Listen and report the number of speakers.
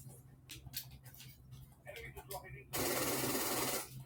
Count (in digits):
0